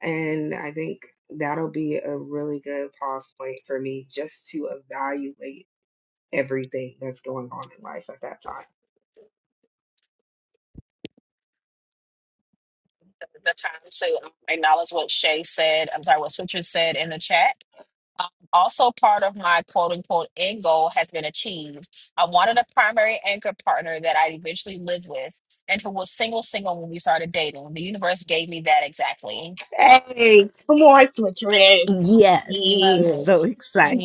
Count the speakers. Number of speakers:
3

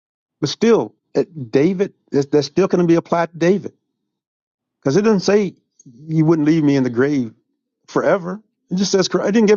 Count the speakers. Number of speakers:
1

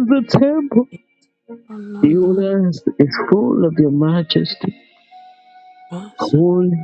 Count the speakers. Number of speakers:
2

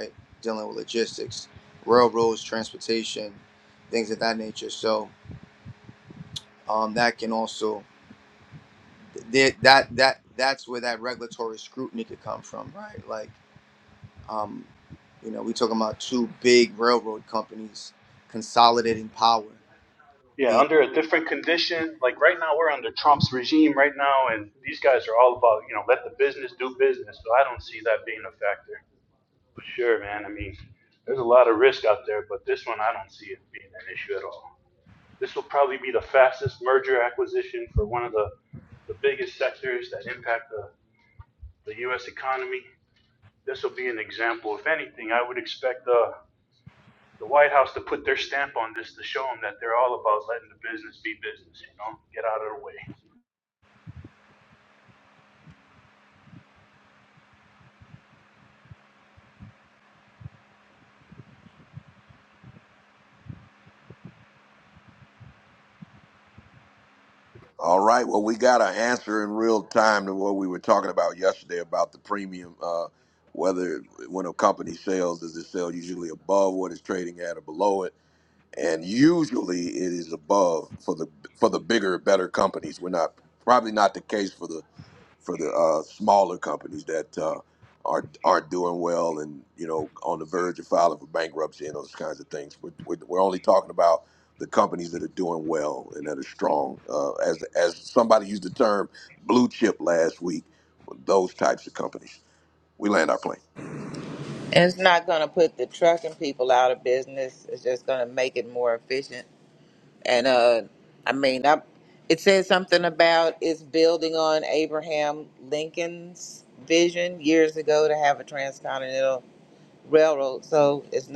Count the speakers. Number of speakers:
4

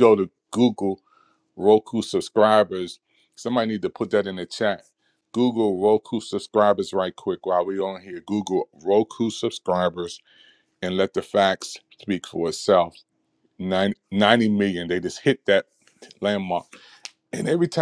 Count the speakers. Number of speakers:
1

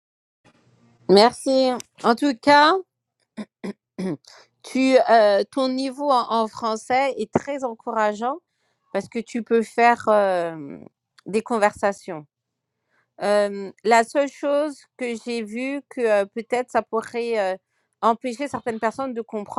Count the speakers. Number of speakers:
1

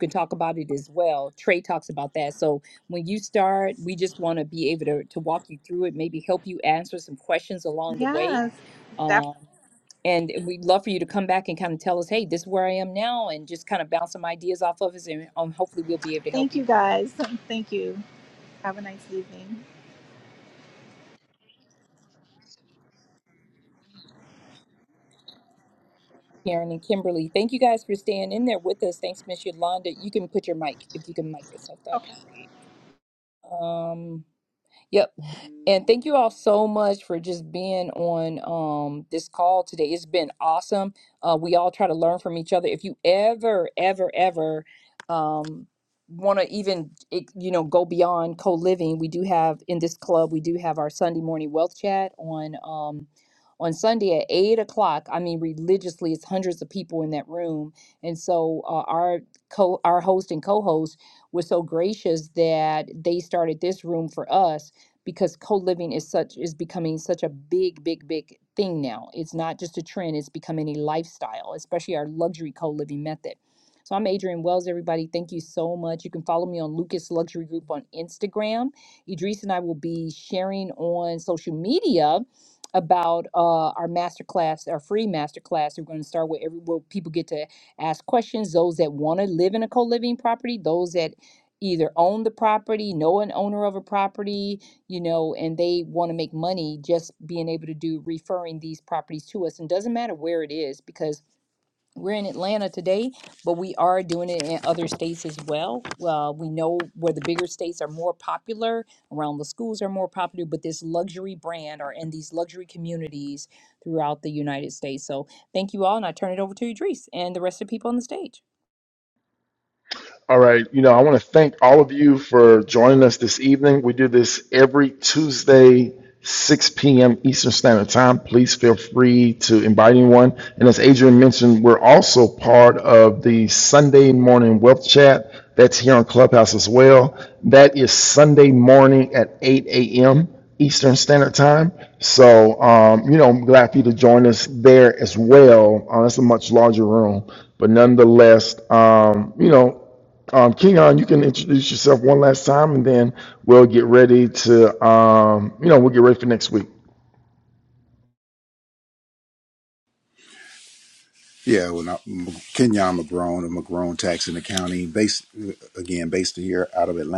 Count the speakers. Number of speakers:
4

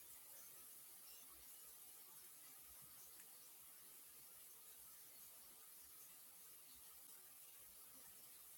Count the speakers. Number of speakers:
0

